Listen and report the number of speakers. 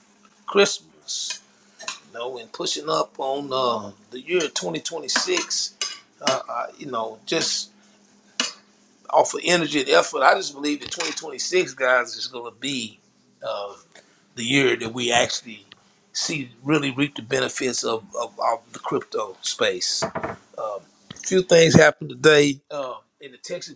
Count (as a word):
one